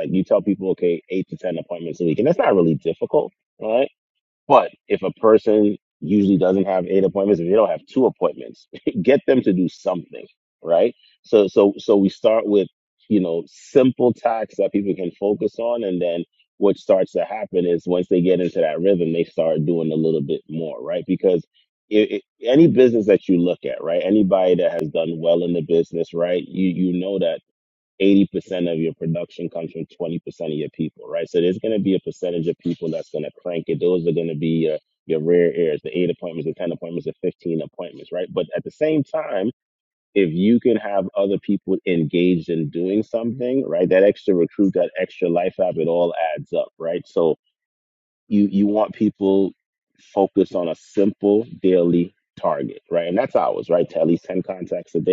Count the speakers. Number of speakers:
1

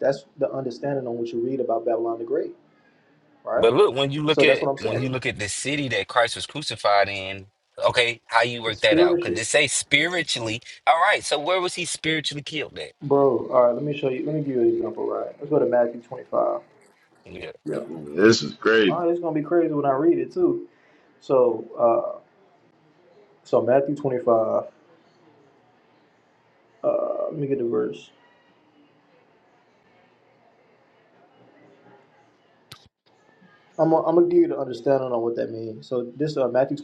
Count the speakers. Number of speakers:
3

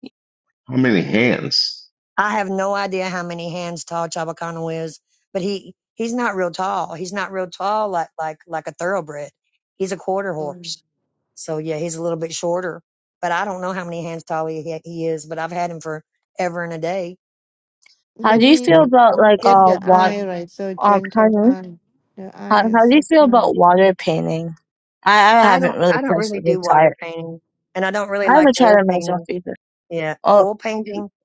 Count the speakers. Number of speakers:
4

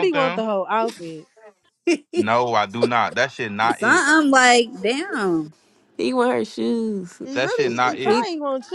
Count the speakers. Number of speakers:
4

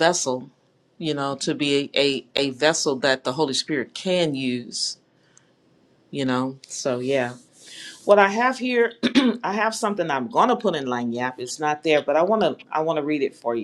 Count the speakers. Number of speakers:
1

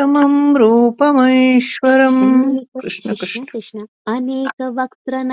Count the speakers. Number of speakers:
2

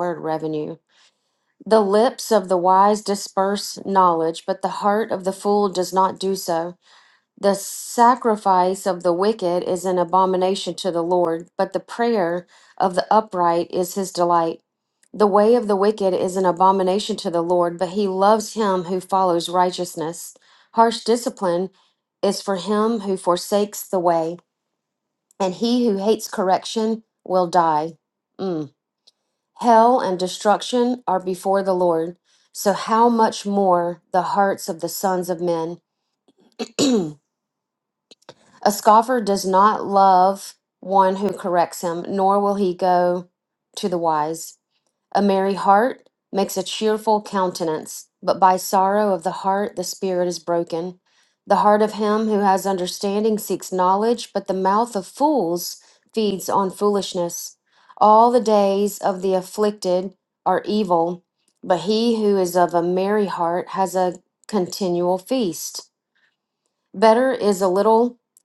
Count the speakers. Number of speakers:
1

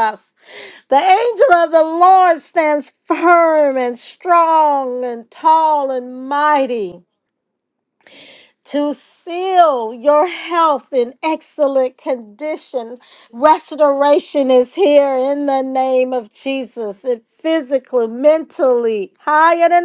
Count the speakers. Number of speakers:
1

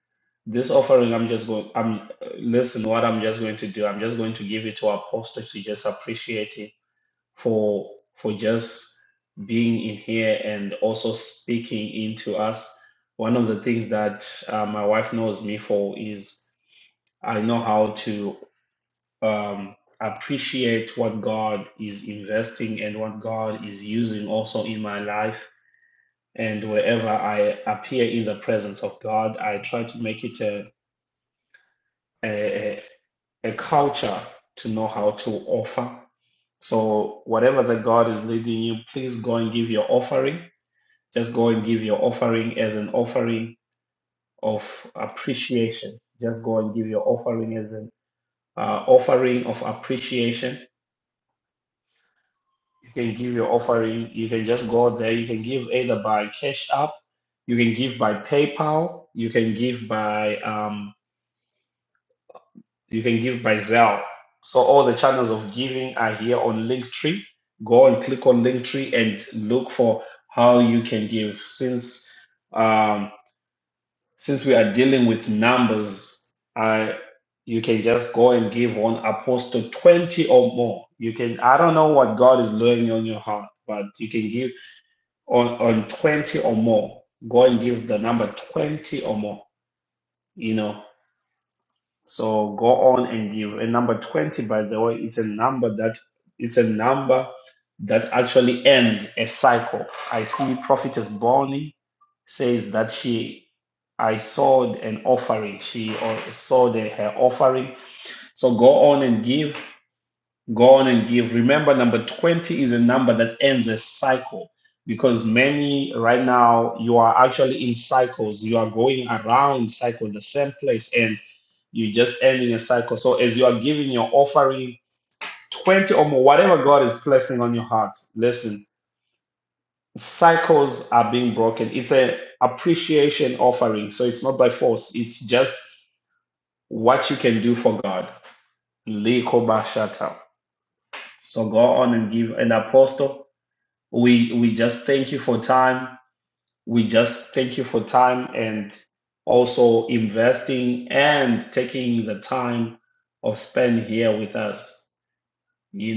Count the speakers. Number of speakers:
1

